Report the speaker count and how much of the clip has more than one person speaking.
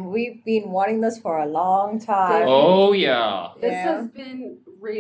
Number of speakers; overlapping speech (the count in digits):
3, about 31%